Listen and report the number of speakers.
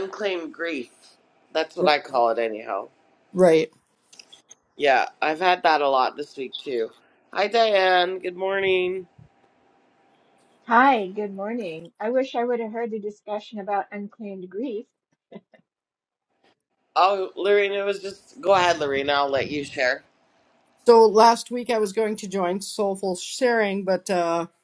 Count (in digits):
3